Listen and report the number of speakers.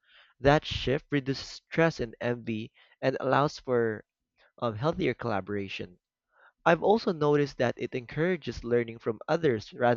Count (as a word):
one